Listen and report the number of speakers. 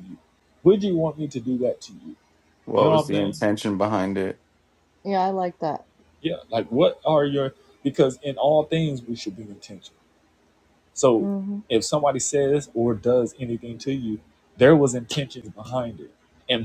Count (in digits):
3